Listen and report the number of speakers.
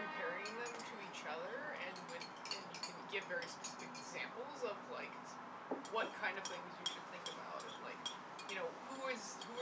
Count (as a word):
one